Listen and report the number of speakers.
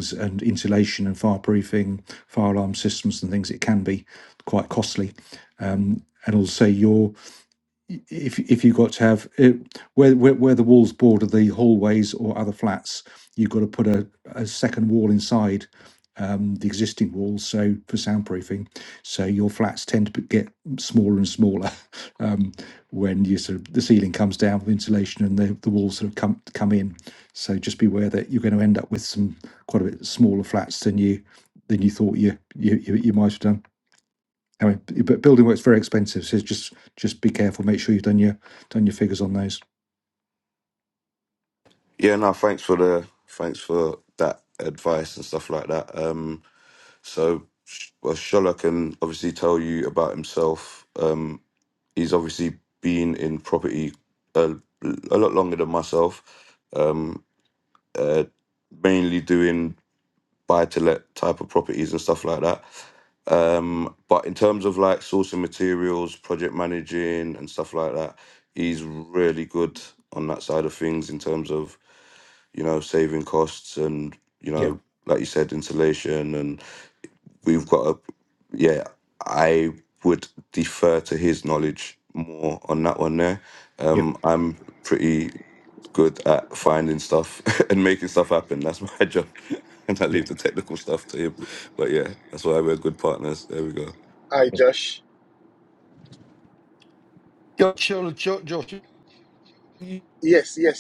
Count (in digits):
4